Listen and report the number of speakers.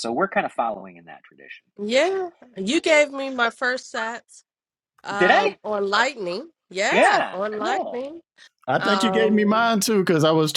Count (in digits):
3